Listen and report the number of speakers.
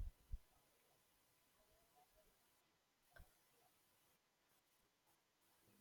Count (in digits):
0